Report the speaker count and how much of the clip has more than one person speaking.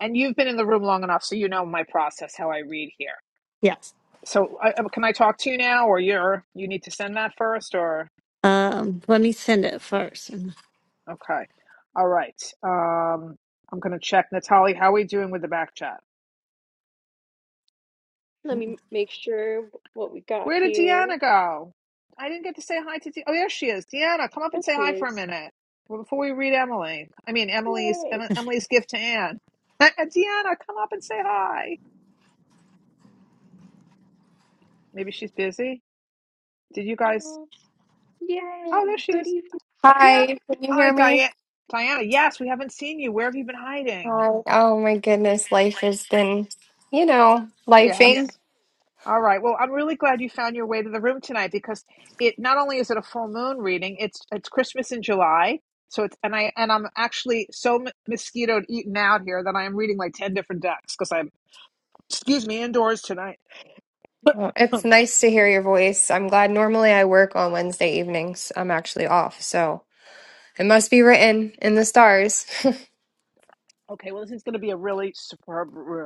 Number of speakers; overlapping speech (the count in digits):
4, about 5%